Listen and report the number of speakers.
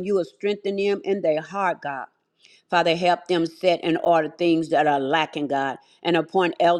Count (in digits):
1